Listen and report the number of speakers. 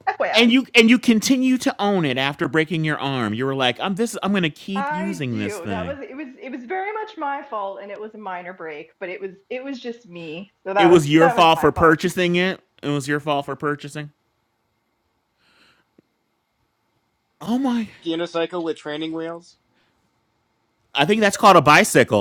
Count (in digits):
3